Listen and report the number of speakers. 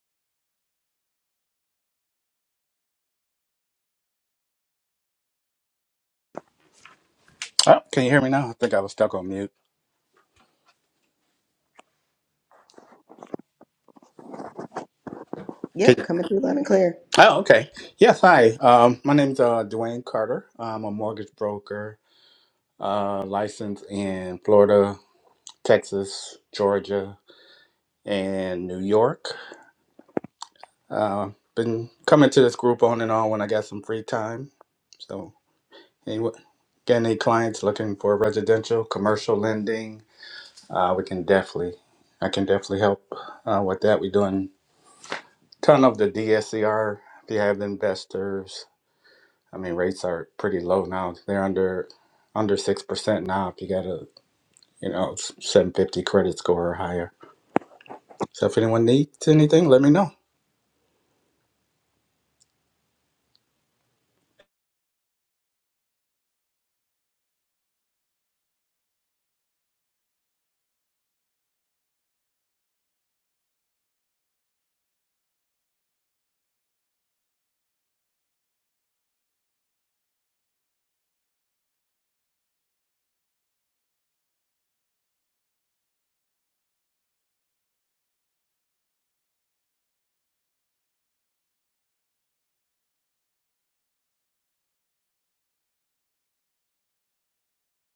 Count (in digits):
2